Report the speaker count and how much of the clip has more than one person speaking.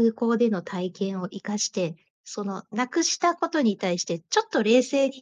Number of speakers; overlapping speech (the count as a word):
one, no overlap